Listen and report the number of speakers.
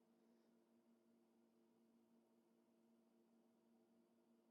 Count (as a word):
zero